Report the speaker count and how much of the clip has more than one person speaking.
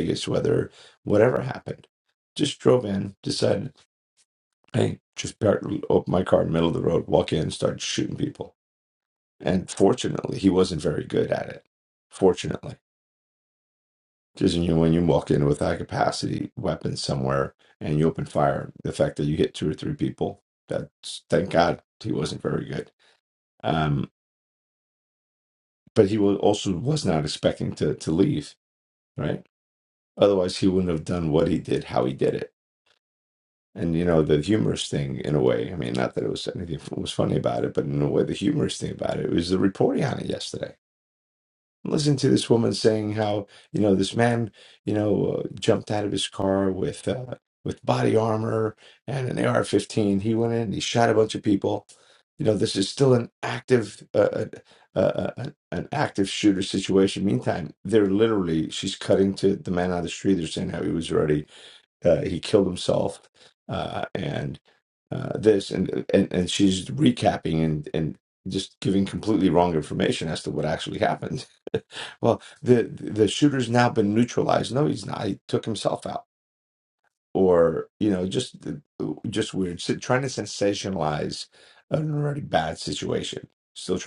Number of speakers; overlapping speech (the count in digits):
1, no overlap